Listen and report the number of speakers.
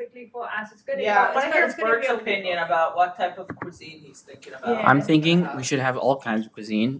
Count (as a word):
three